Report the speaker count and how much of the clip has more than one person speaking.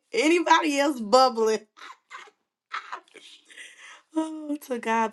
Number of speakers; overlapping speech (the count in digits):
1, no overlap